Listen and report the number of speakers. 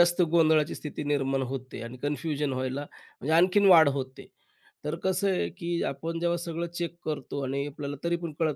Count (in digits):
1